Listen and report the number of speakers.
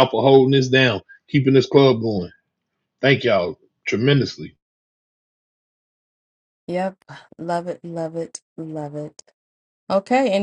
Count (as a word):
two